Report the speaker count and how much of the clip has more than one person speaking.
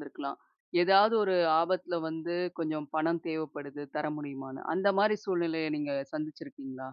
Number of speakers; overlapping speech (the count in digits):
1, no overlap